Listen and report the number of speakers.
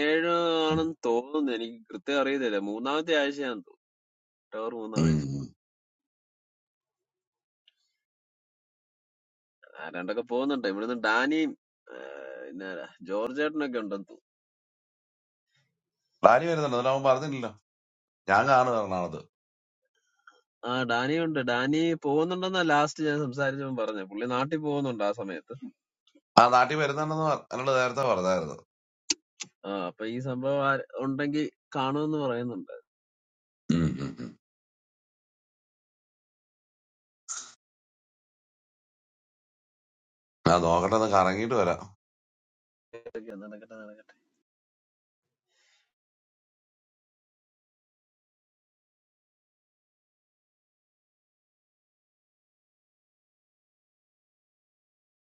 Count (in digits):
2